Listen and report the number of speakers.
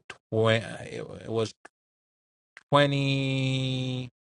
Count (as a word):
one